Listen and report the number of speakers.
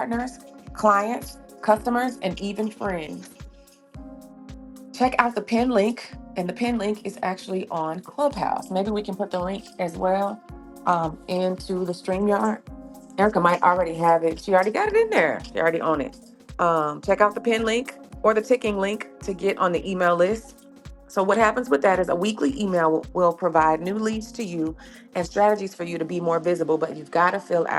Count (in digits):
1